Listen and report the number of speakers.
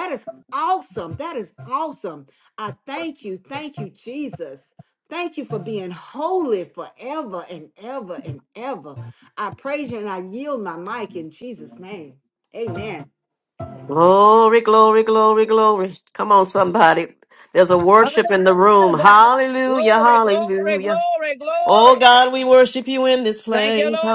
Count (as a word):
three